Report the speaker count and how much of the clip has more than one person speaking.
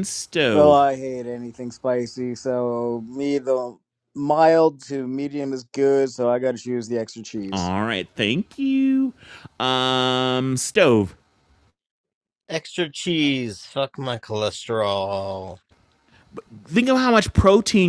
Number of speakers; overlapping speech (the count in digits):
3, about 2%